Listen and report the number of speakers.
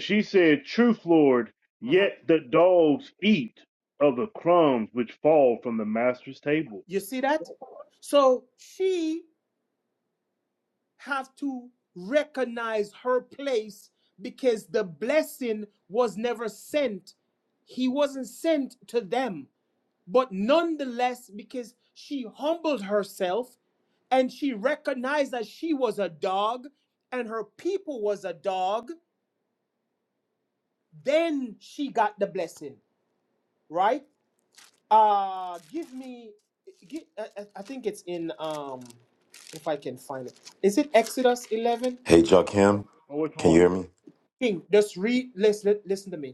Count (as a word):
three